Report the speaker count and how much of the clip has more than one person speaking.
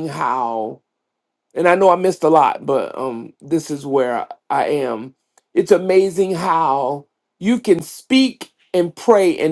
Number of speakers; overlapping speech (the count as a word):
one, no overlap